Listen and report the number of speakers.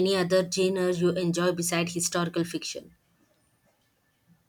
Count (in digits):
1